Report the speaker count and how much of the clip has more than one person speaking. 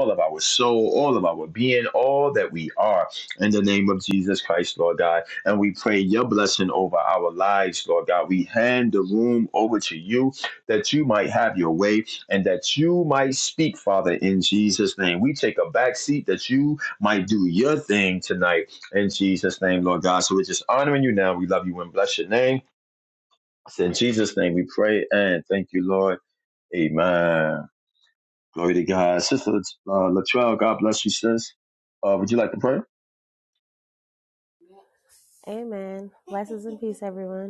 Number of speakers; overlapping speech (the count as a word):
two, no overlap